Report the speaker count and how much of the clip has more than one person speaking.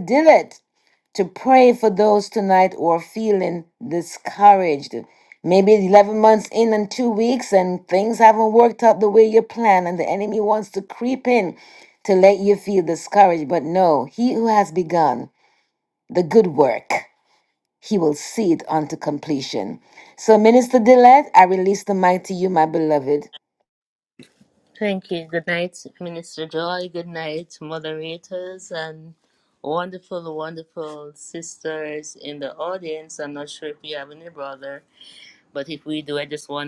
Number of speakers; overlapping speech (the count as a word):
two, no overlap